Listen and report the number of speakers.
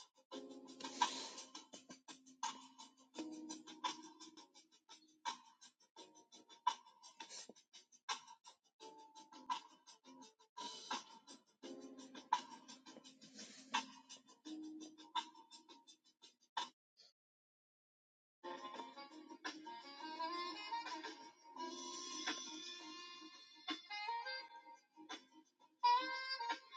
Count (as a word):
zero